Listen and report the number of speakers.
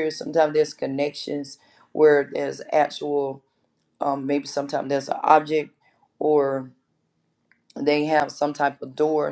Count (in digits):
1